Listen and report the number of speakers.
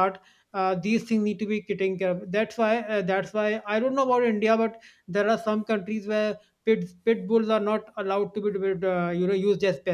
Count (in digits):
1